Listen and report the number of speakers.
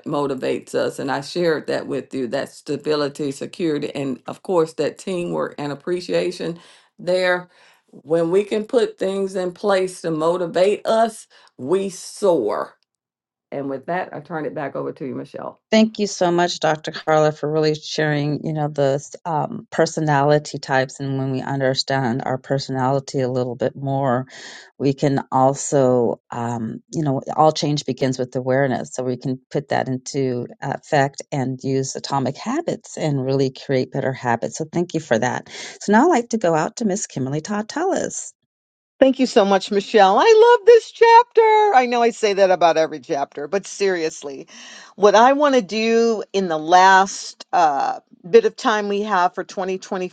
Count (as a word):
three